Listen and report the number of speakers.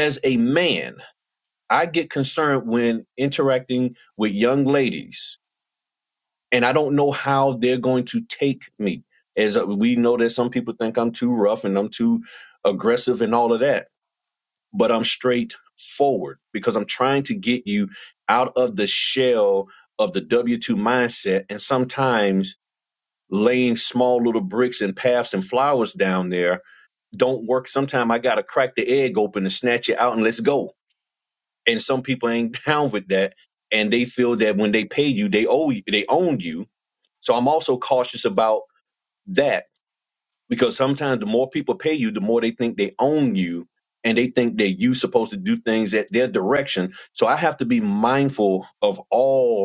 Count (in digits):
1